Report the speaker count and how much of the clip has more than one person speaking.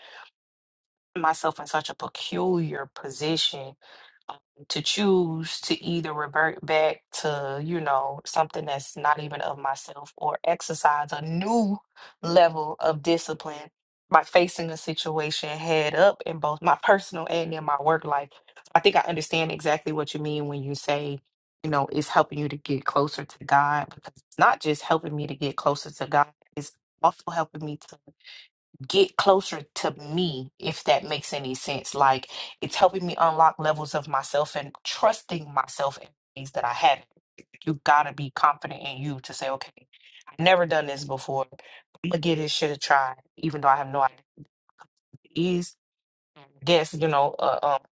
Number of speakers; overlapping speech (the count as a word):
one, no overlap